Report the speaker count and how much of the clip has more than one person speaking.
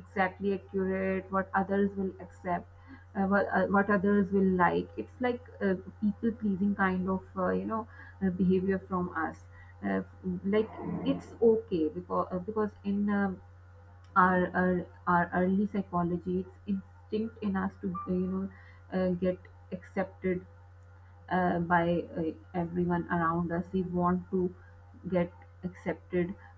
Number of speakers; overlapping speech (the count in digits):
1, no overlap